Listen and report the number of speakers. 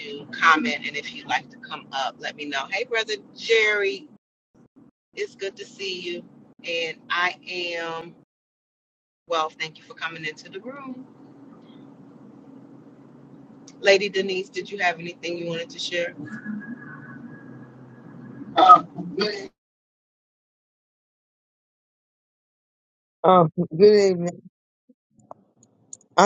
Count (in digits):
2